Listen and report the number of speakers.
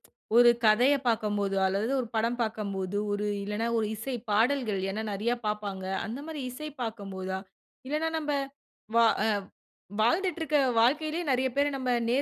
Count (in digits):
1